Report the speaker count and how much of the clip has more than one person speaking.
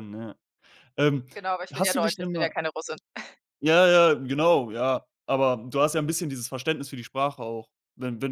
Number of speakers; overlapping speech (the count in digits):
2, about 10%